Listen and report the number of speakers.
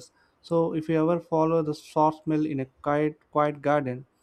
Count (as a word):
one